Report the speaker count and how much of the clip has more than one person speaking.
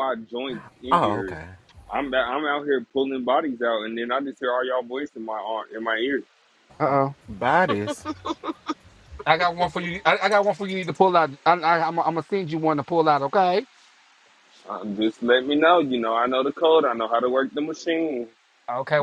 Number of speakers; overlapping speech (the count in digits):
3, about 3%